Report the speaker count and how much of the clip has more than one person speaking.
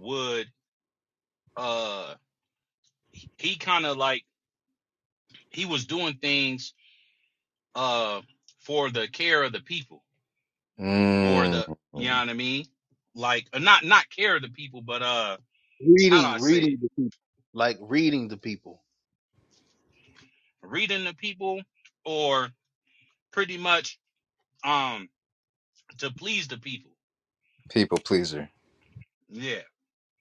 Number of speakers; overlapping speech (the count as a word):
three, about 4%